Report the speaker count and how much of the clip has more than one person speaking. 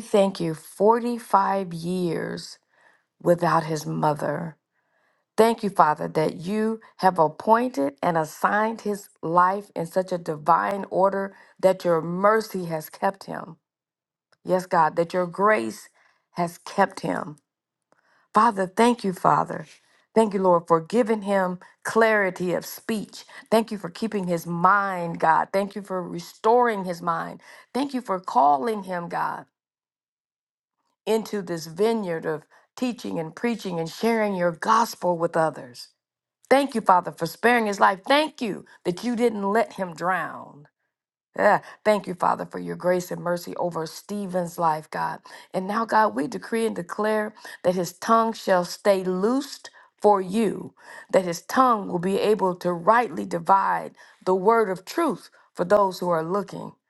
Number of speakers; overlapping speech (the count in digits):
1, no overlap